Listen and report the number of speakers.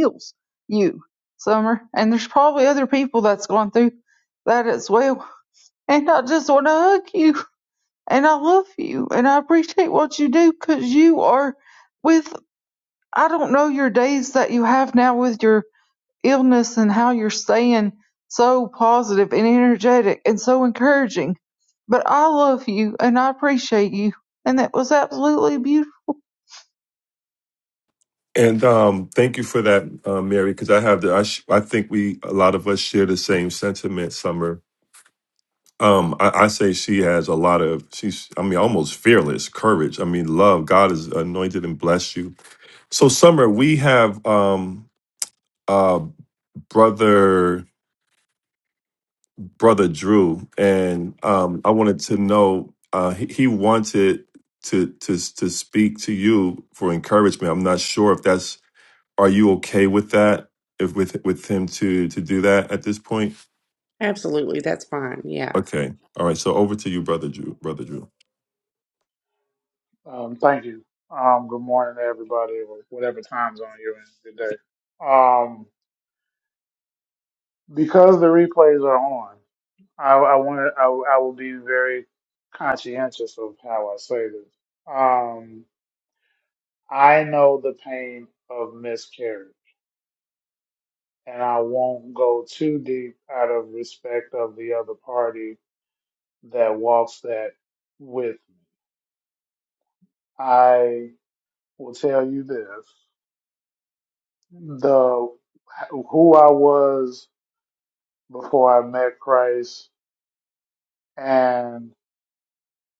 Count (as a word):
four